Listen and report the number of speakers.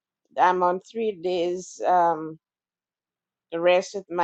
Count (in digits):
1